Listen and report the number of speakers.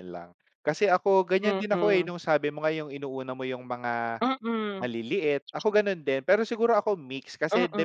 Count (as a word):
two